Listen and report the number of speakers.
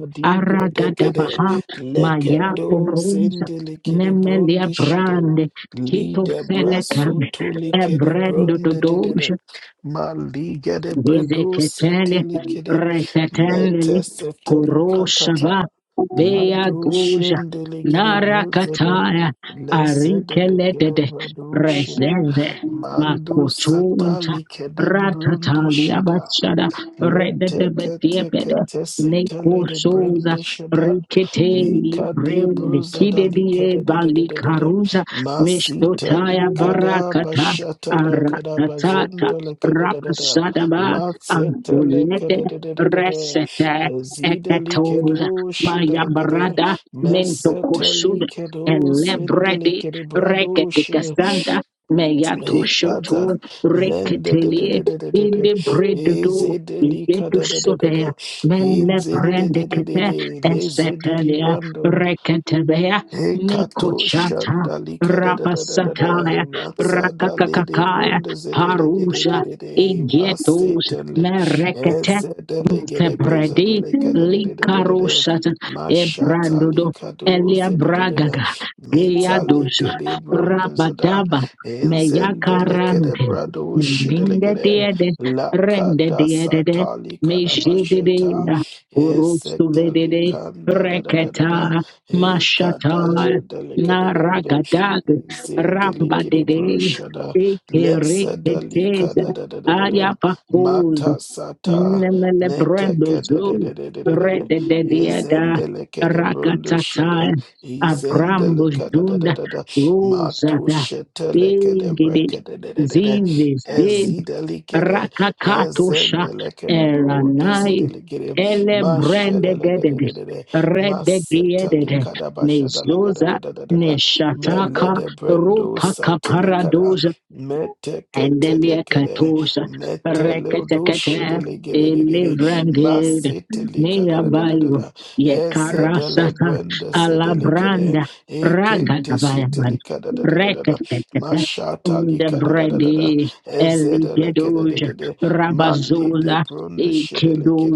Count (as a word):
two